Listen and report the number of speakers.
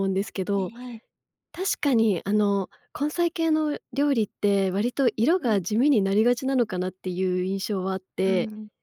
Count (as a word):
two